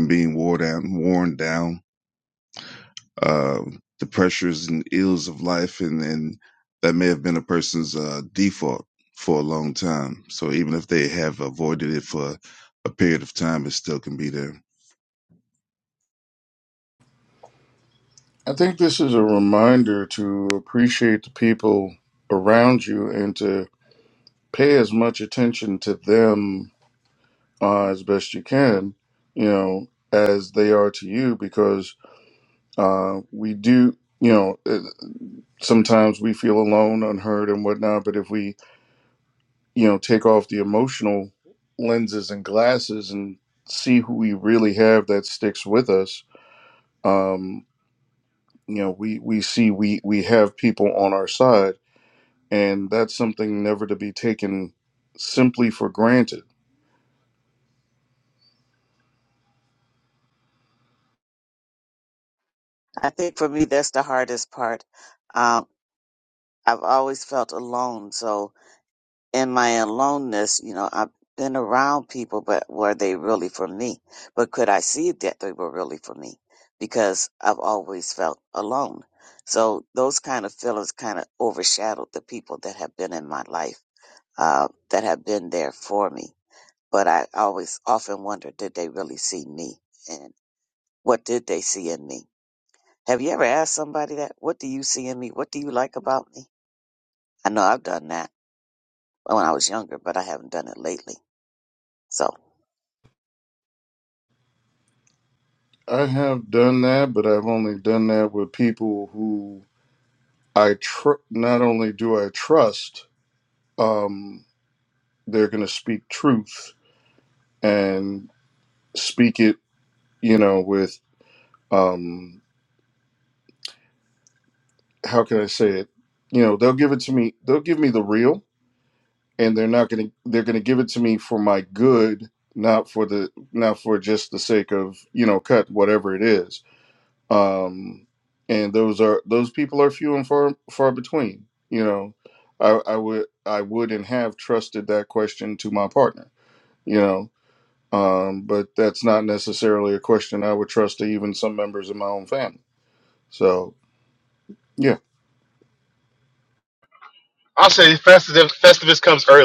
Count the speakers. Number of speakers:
four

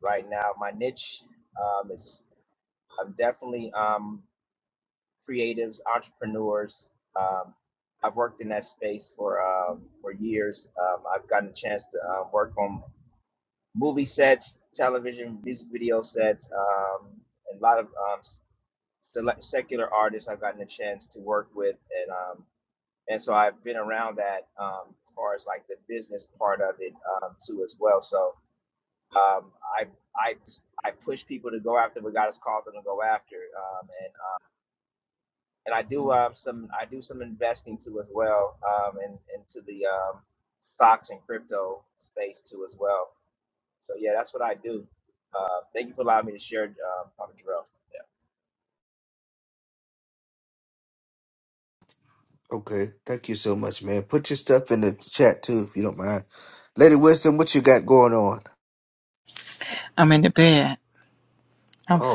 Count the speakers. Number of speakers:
three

